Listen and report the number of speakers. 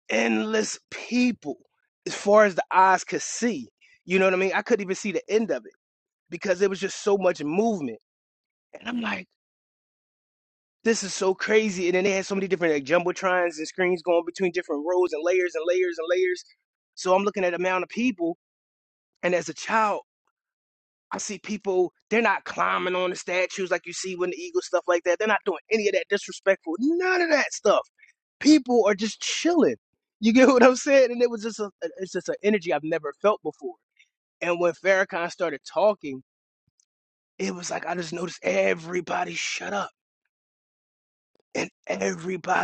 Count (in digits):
1